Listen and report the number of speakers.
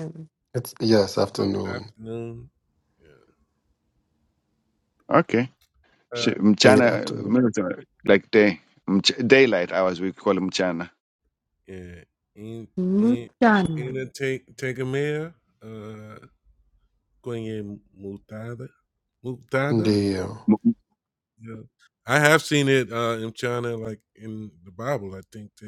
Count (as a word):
four